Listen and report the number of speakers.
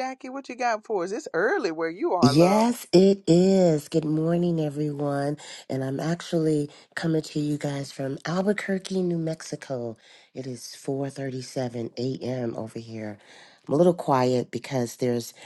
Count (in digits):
2